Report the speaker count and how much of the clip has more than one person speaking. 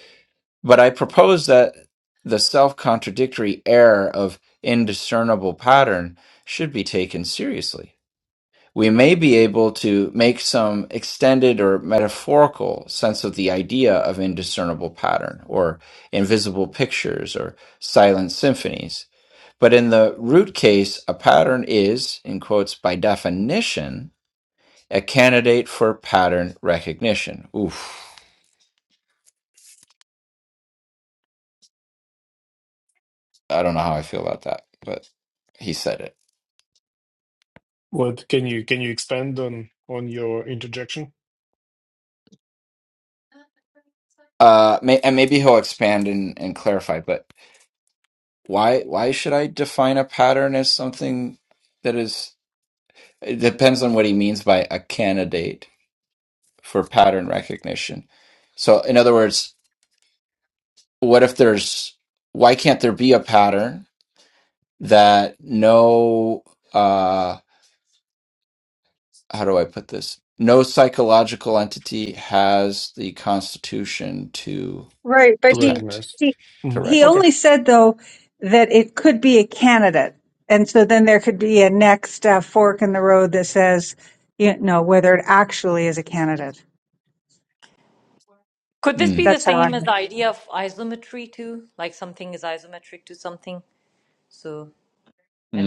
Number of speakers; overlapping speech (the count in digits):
4, about 2%